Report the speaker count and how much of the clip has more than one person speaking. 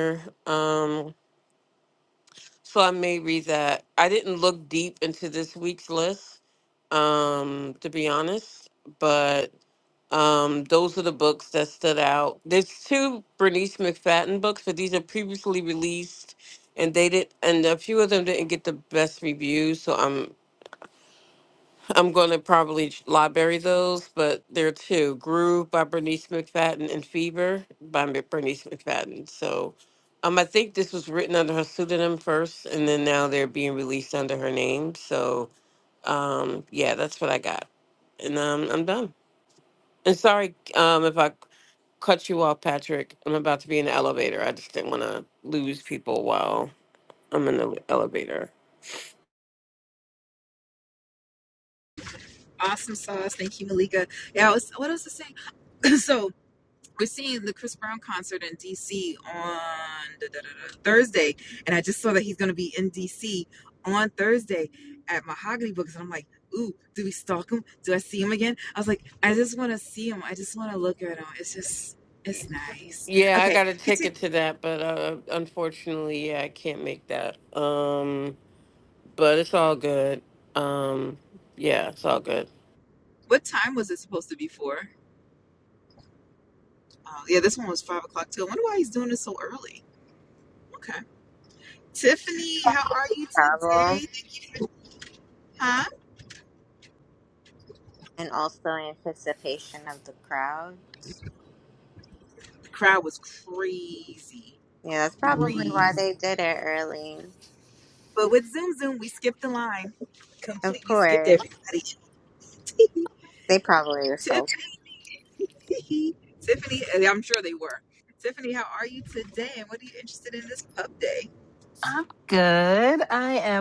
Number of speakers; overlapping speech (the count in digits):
4, about 2%